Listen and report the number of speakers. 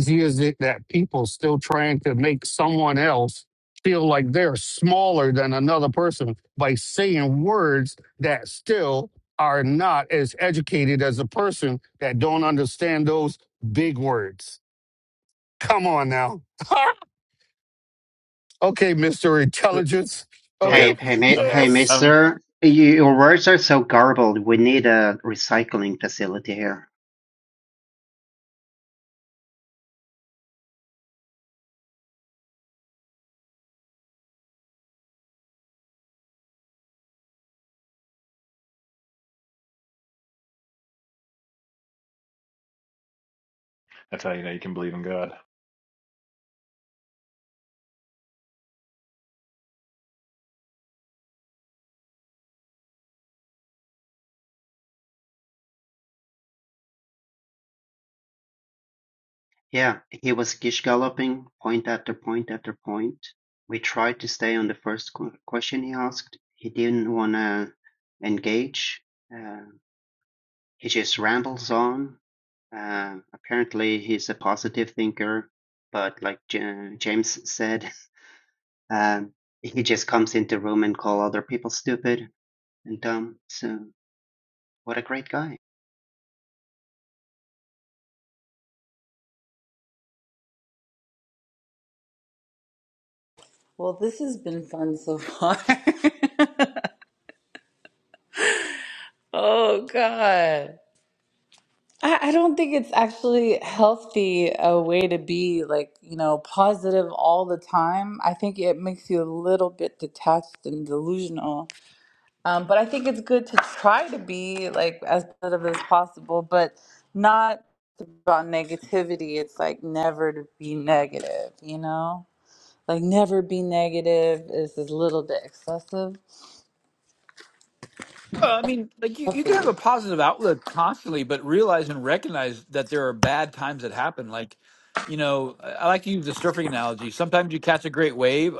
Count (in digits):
5